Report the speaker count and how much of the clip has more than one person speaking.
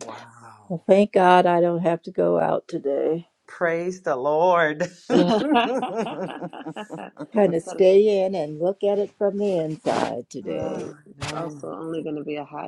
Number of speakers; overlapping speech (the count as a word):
three, about 10%